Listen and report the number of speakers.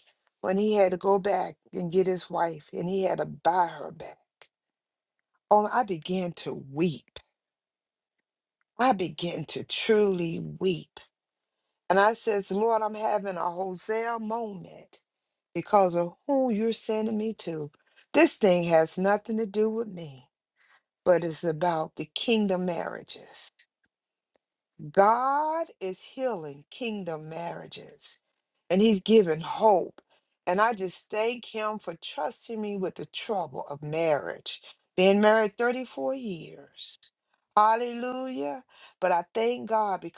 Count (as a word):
one